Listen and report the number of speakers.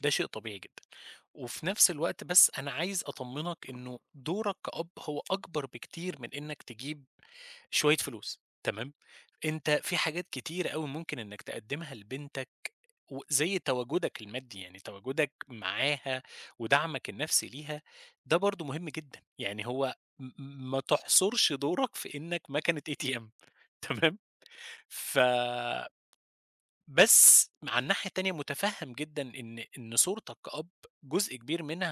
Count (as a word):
one